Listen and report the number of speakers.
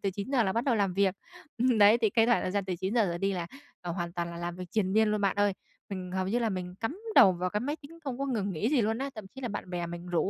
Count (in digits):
1